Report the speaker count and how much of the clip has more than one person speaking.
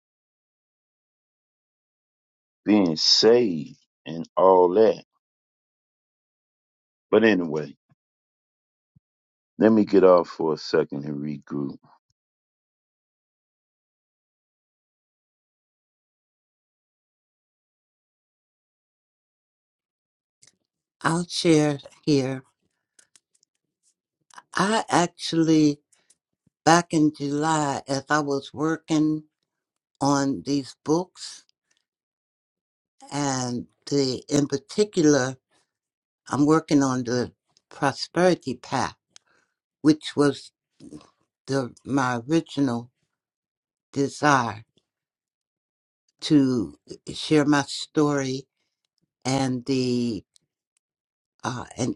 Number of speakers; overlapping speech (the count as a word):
two, no overlap